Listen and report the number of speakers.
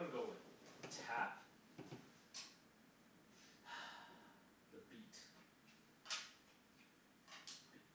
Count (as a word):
one